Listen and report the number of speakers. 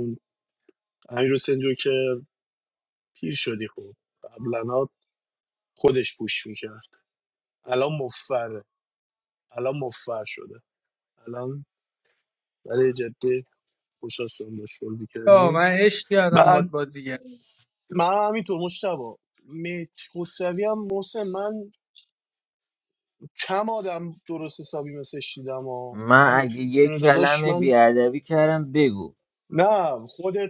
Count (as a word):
three